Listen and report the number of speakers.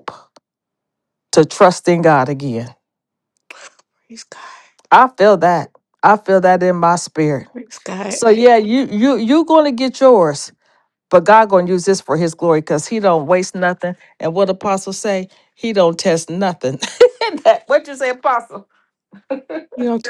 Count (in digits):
2